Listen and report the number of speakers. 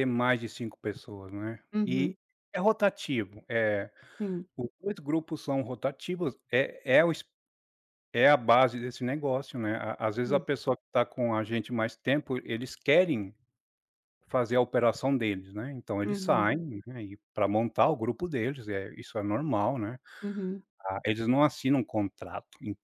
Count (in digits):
2